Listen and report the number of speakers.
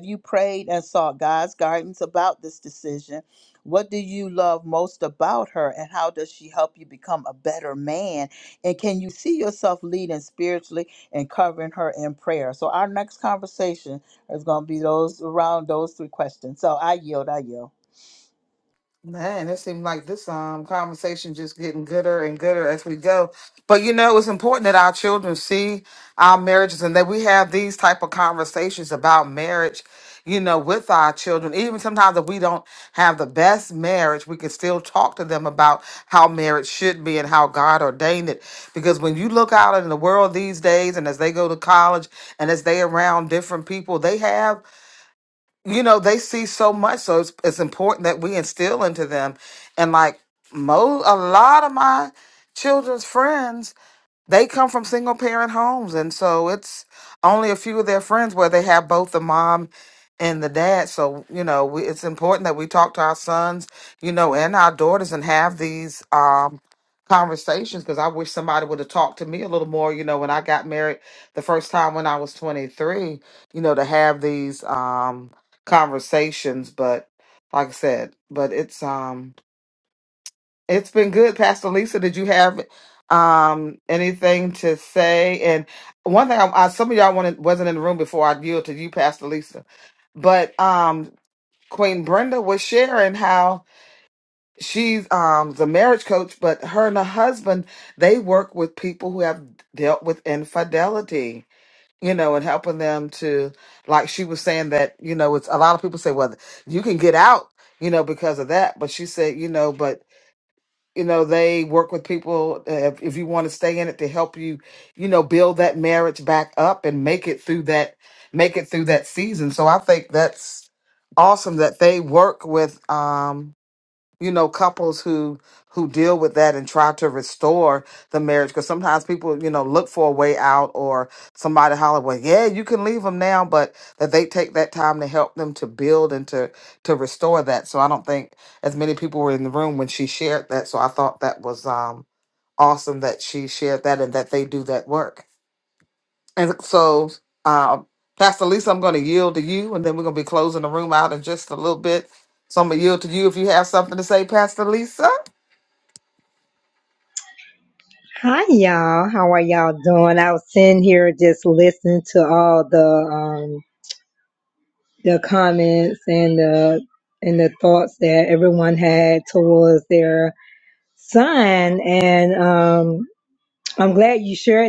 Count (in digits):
3